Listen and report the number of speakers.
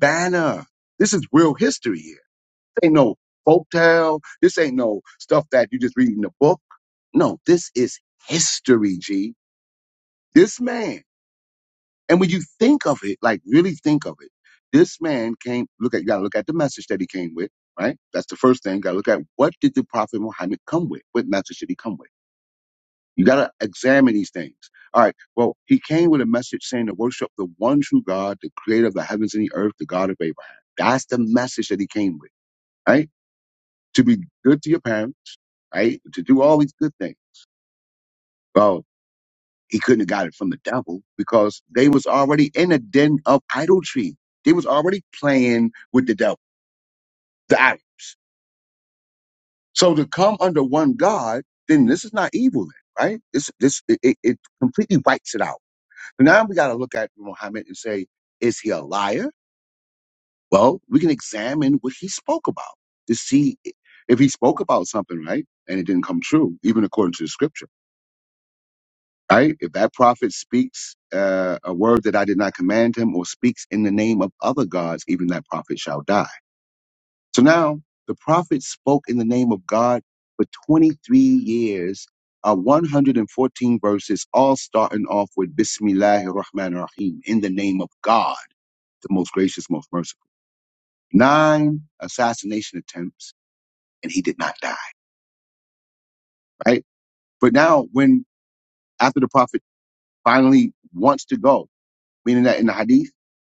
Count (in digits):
1